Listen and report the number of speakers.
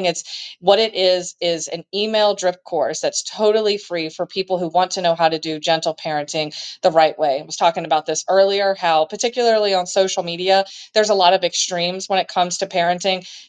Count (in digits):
1